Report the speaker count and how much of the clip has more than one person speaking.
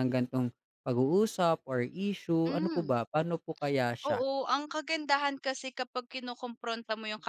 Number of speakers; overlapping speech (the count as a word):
two, about 8%